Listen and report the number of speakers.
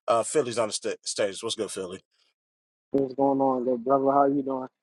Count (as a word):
two